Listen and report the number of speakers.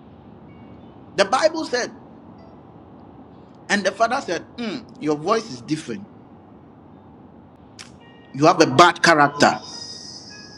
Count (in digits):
1